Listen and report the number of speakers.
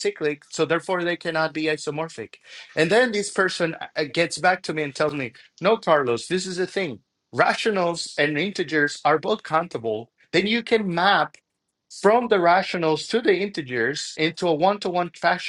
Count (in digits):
1